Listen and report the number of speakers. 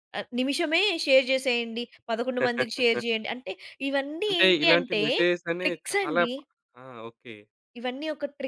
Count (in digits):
2